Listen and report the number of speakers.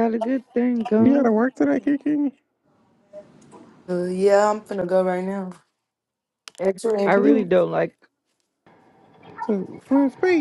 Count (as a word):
three